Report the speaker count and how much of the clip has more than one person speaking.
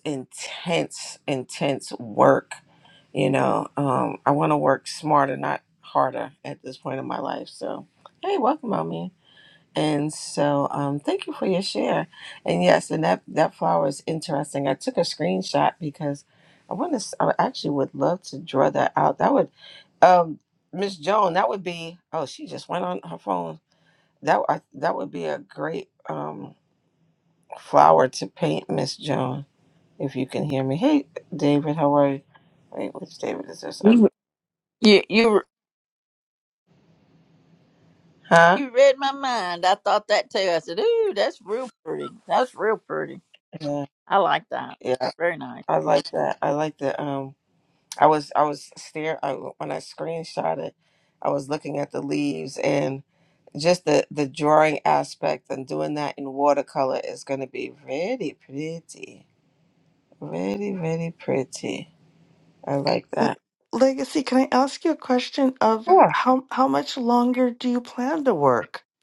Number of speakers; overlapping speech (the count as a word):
three, about 1%